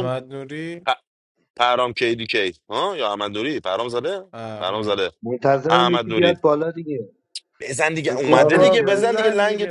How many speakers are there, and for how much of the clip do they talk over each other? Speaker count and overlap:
three, about 28%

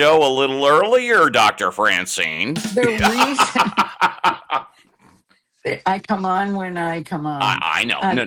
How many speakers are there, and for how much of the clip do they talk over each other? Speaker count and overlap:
two, about 24%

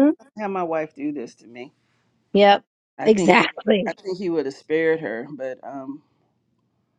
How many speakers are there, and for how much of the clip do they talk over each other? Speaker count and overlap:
two, about 5%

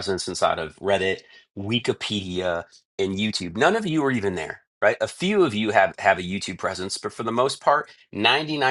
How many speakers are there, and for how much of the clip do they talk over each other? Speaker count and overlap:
one, no overlap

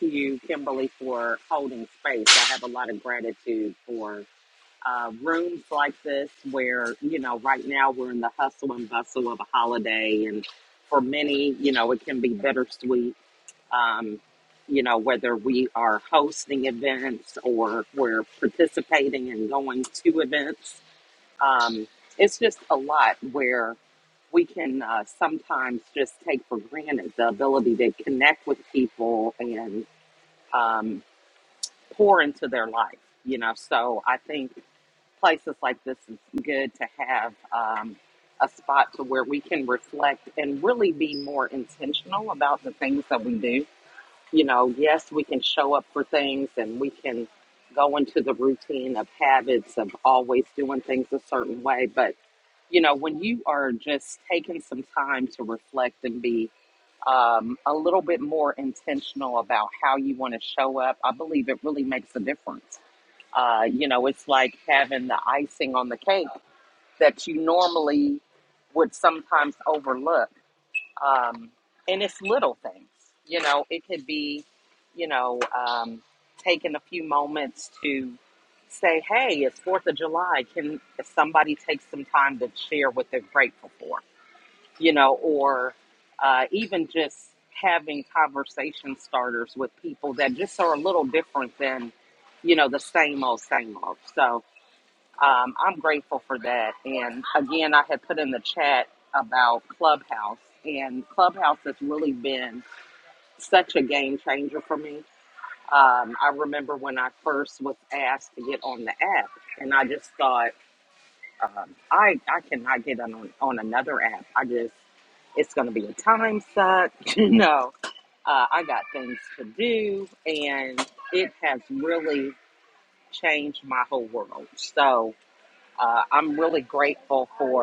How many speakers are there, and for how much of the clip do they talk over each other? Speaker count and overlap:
one, no overlap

